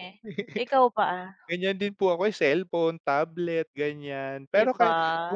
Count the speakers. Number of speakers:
2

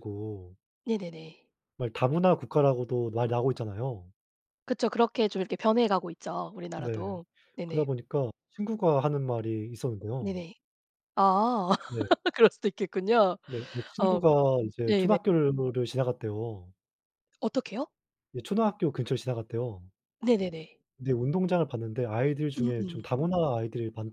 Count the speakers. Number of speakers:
2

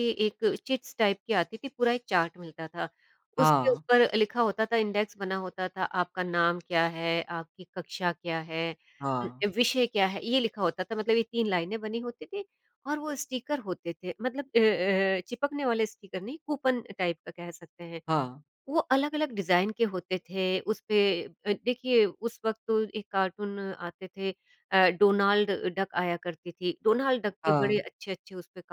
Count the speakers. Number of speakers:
2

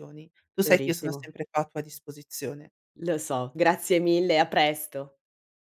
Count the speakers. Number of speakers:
2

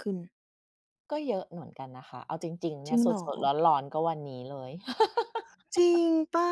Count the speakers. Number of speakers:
2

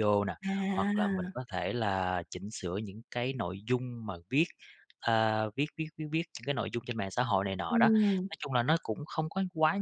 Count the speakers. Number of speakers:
2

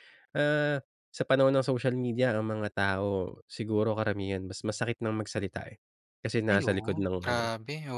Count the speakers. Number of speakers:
2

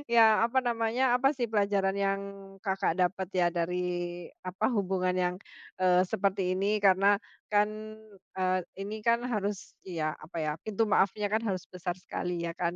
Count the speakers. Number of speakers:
1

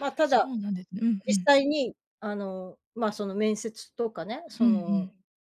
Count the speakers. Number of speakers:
2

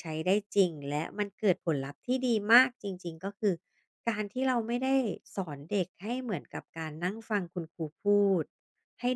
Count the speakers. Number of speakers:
1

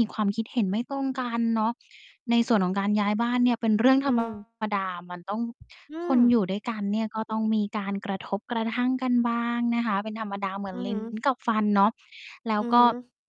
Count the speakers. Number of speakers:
2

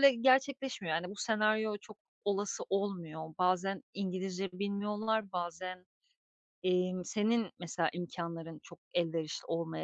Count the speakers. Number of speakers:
1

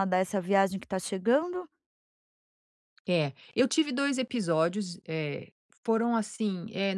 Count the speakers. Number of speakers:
2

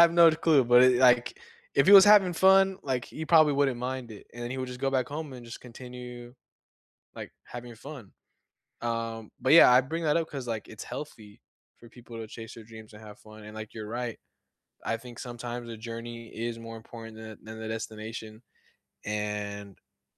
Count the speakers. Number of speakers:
1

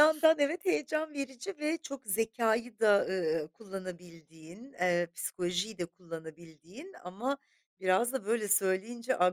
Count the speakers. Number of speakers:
1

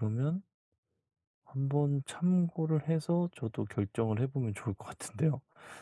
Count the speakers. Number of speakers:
1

